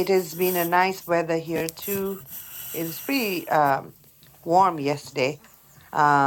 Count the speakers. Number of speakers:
1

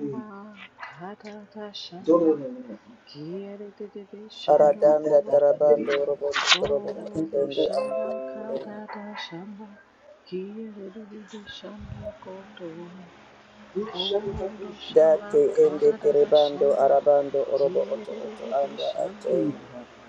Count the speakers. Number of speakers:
3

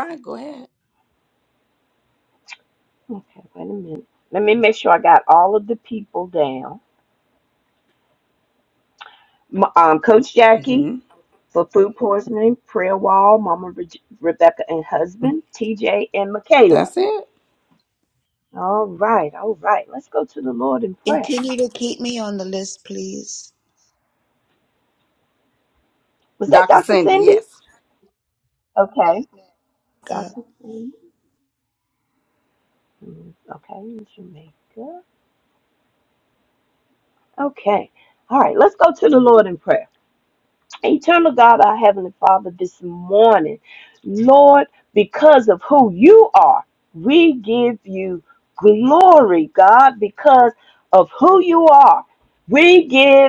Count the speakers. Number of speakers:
3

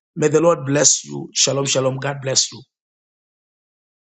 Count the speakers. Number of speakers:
1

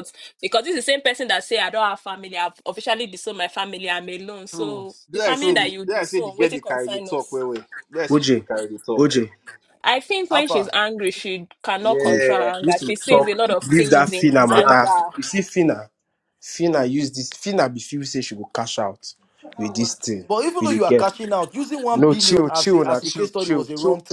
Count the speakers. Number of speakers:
4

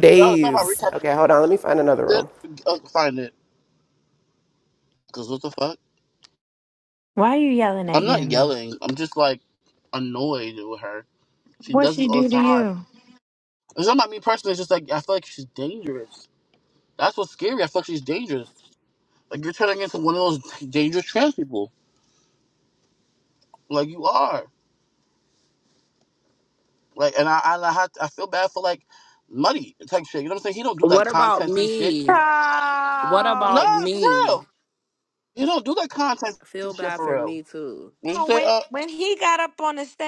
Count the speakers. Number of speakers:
4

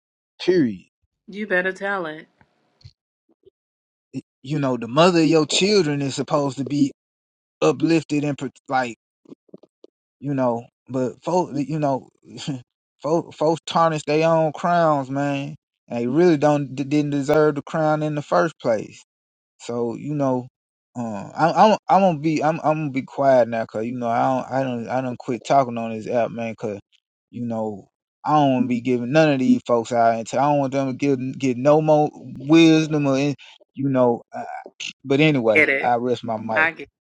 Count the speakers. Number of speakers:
2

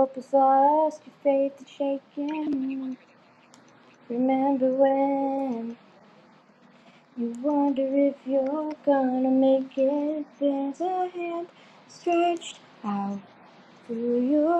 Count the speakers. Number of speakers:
1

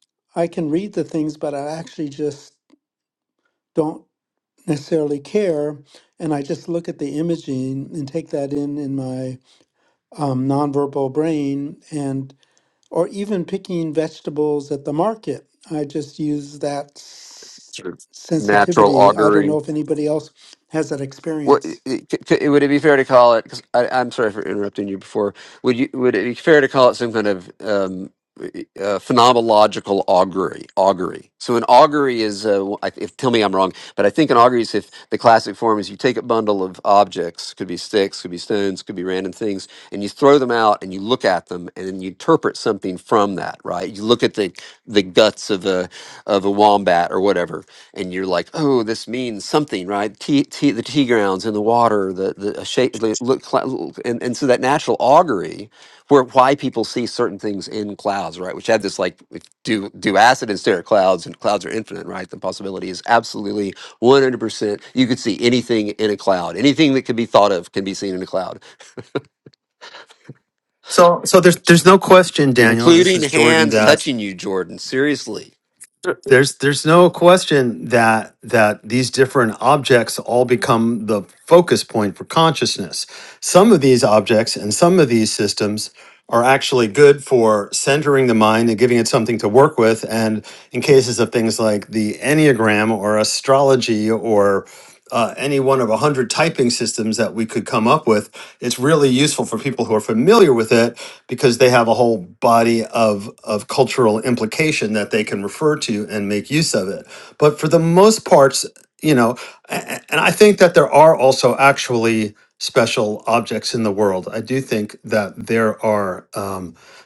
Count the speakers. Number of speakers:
3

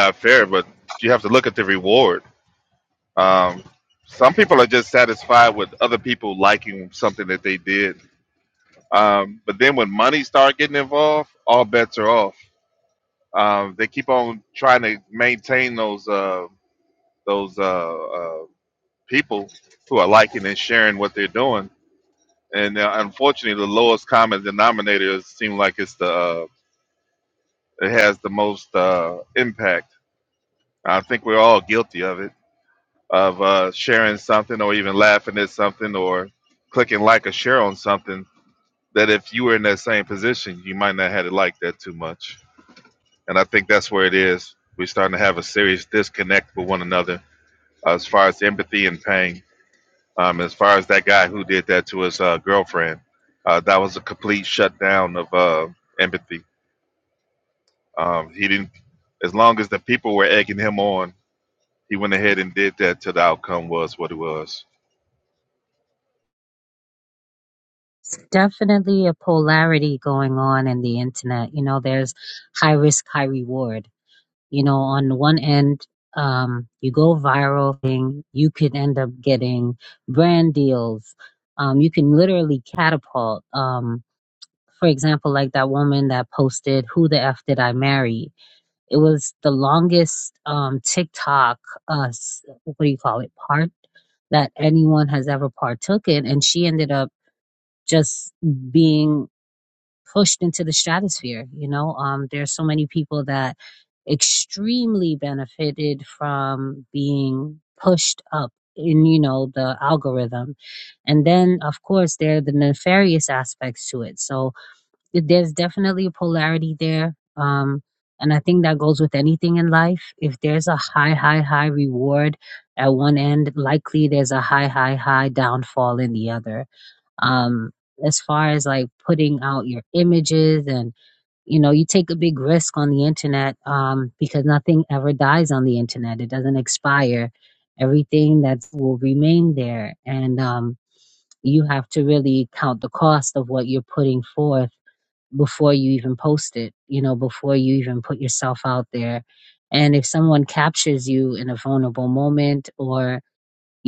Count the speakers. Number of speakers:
2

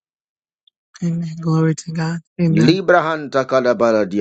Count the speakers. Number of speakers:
2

